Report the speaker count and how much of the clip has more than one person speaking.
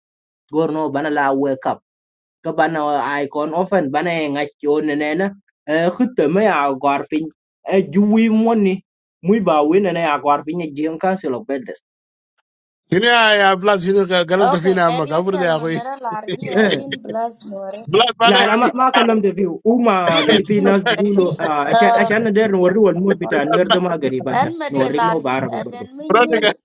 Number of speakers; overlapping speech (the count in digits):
3, about 22%